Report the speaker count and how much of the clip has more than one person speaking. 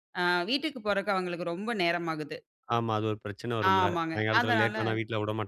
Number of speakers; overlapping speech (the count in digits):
2, about 20%